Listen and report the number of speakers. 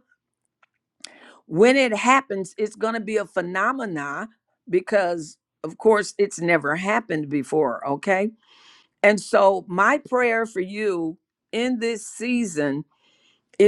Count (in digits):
1